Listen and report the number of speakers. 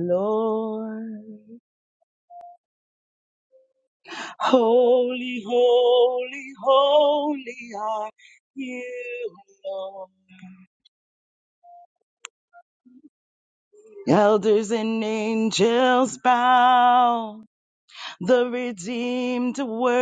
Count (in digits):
1